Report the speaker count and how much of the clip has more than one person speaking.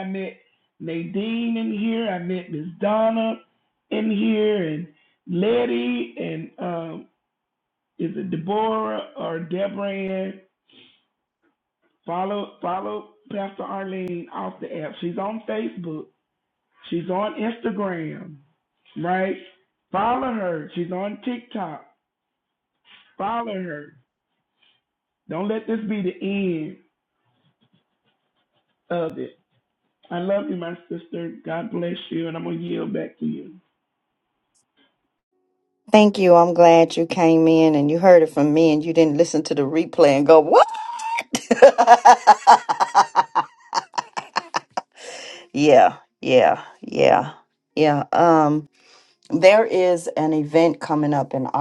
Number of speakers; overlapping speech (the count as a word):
two, no overlap